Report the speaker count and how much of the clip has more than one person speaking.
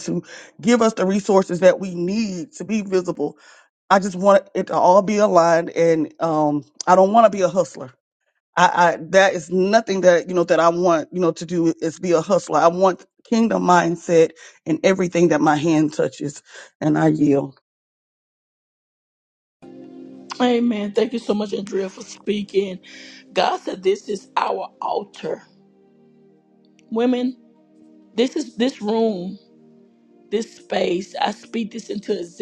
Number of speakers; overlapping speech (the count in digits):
2, no overlap